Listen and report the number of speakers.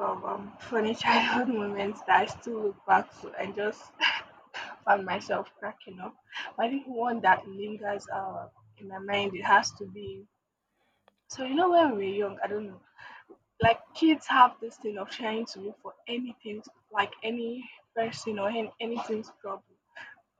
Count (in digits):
1